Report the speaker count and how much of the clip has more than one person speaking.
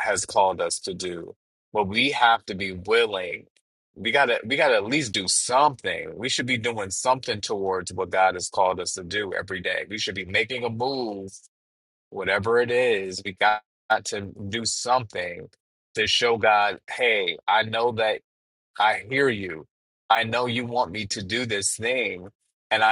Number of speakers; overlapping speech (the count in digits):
1, no overlap